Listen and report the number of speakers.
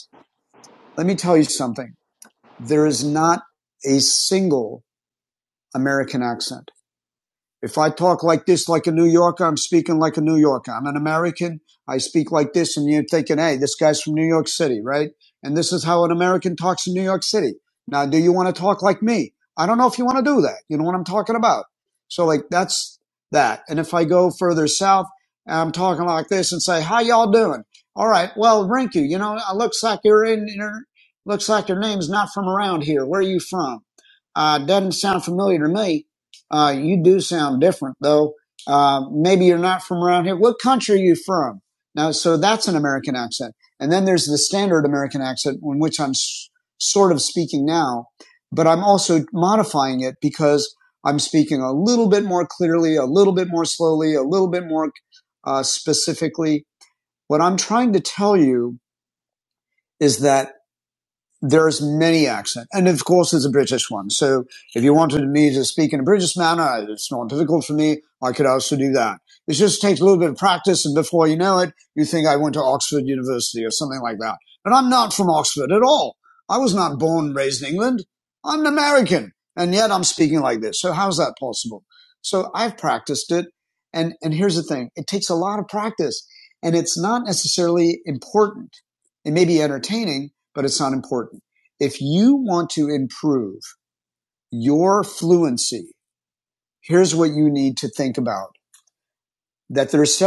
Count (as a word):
one